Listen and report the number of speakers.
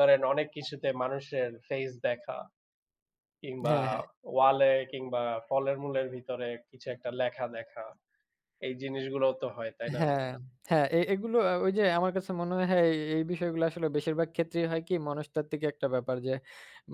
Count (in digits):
2